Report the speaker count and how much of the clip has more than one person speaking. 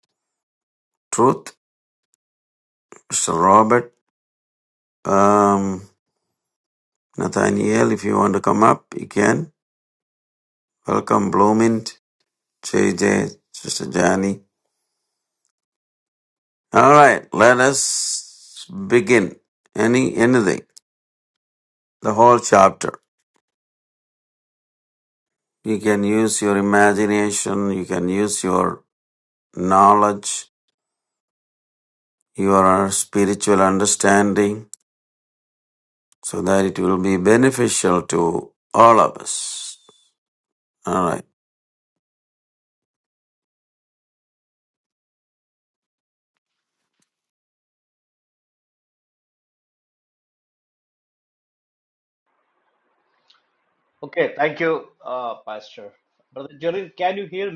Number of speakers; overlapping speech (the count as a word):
two, no overlap